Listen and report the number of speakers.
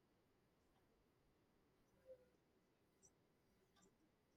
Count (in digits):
0